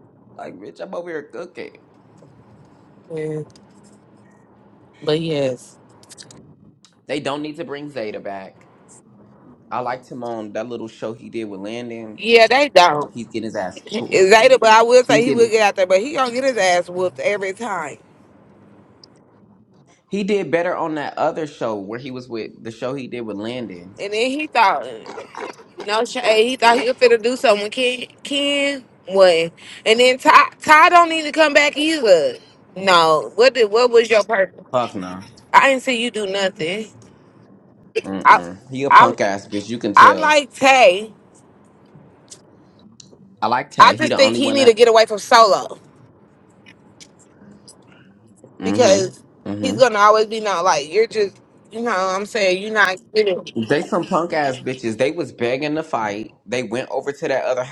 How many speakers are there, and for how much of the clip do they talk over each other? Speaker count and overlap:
2, about 6%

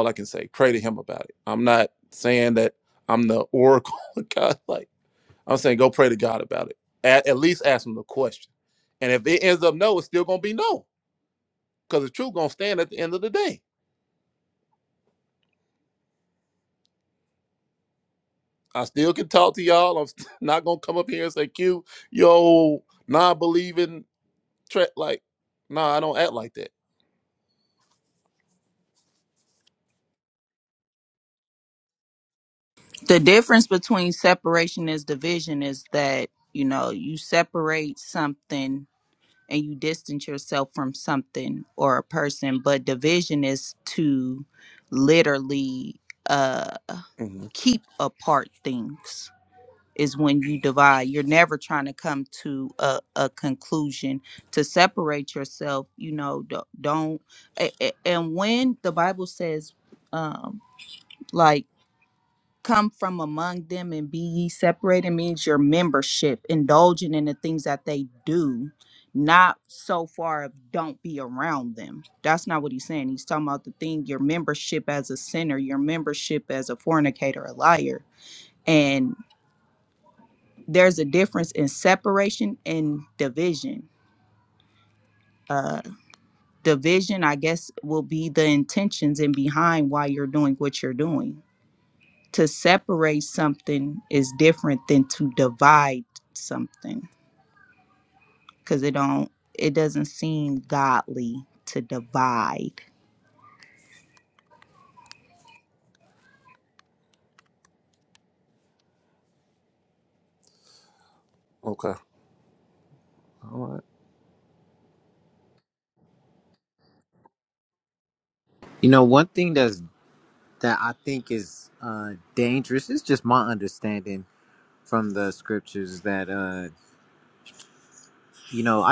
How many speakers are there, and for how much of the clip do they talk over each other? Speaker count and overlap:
3, no overlap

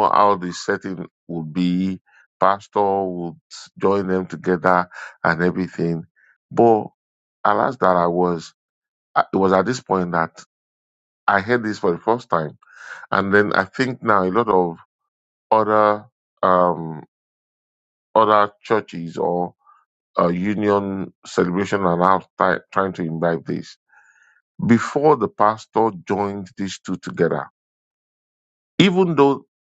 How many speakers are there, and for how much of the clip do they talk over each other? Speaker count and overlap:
1, no overlap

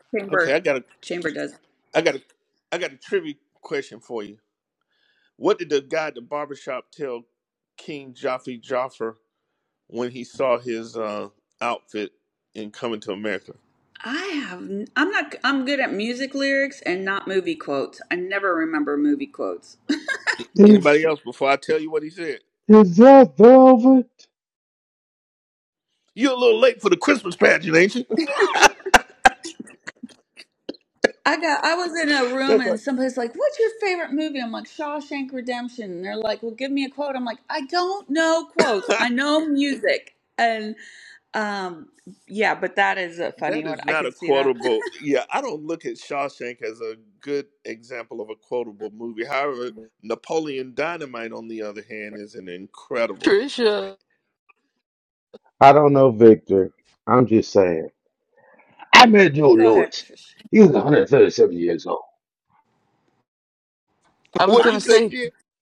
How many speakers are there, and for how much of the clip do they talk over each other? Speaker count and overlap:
4, about 5%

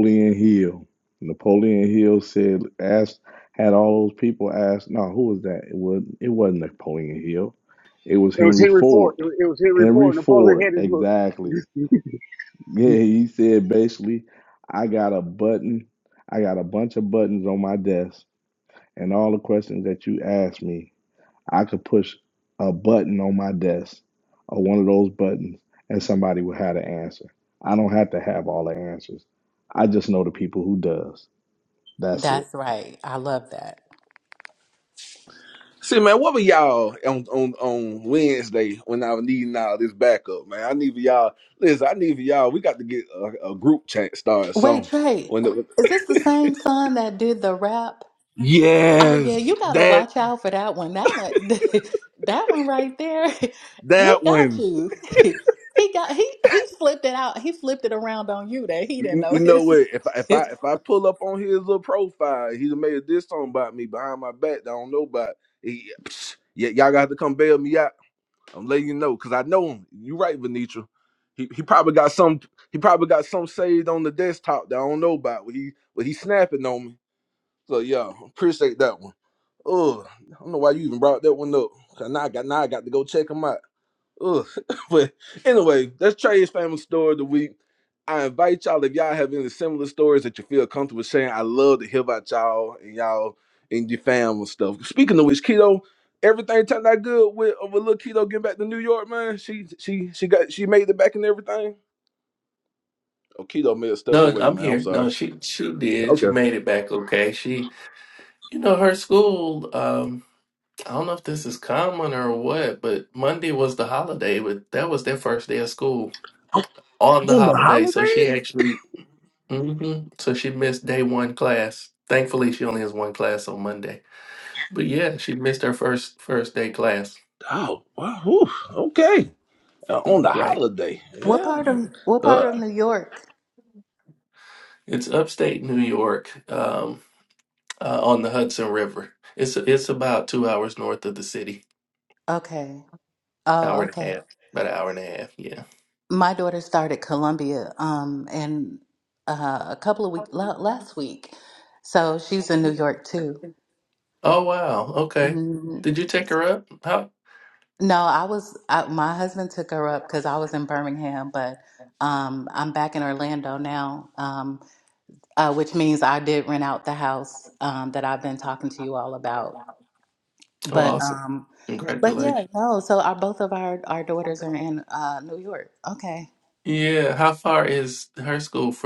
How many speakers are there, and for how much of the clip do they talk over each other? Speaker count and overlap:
5, about 6%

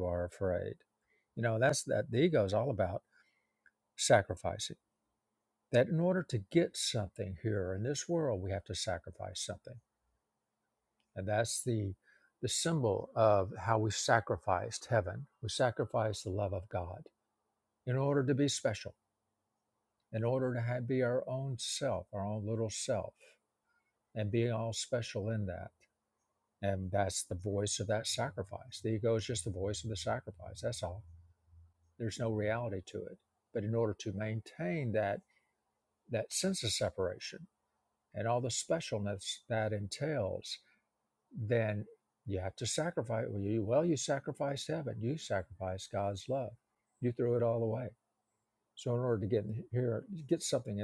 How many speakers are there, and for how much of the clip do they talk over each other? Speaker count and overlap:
1, no overlap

